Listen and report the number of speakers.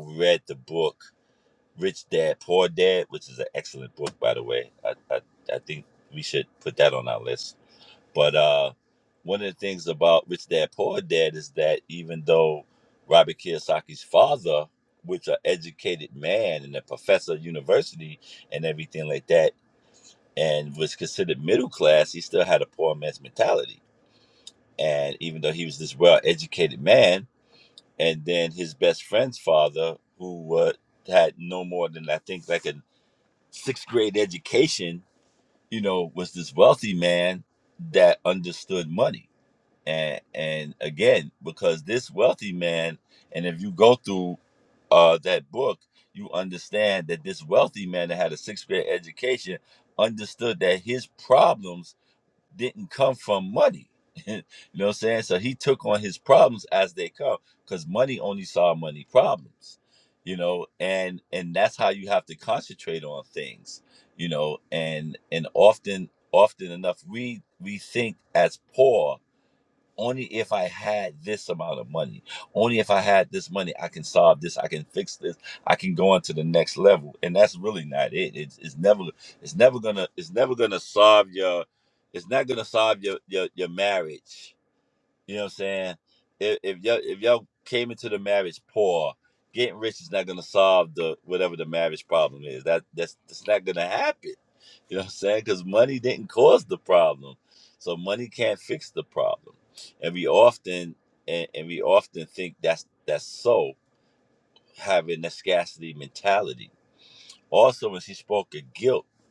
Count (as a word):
one